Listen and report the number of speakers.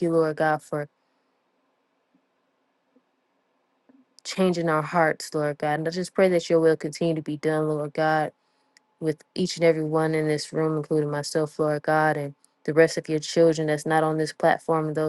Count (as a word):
one